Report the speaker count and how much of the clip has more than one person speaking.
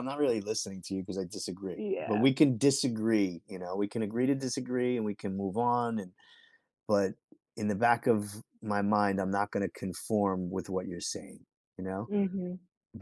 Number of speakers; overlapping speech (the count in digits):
2, about 4%